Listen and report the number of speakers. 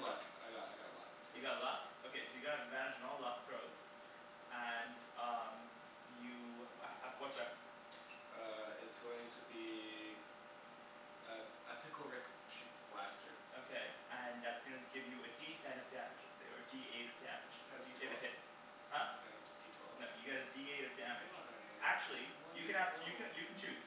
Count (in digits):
2